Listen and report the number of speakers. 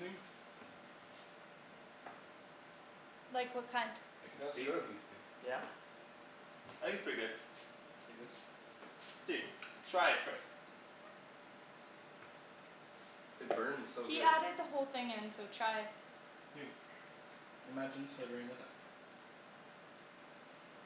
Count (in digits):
4